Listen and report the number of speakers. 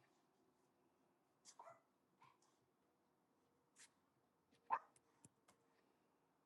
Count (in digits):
0